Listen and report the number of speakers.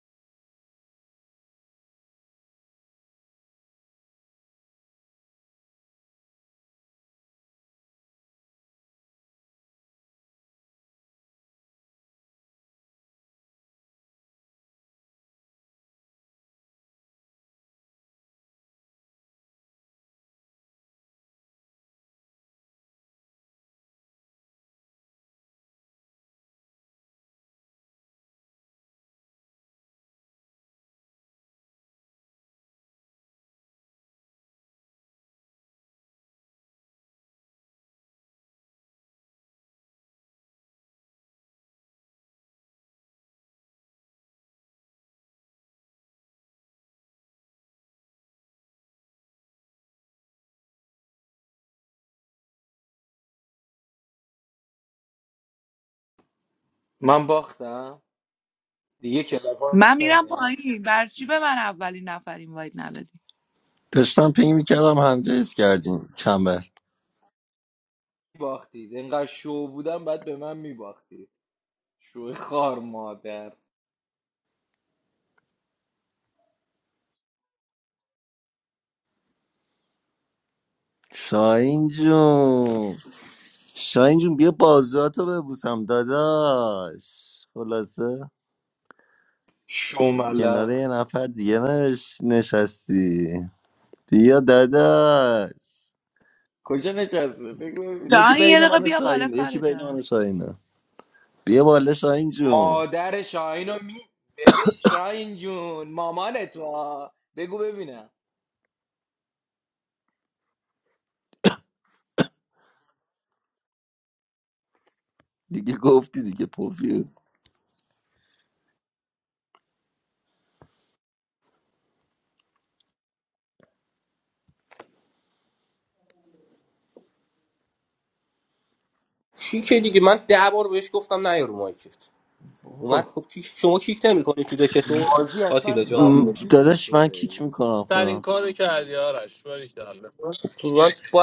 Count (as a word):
five